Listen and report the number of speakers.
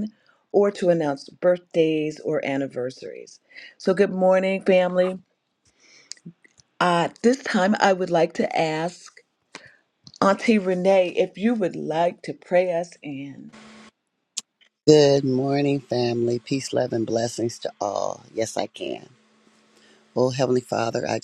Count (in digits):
2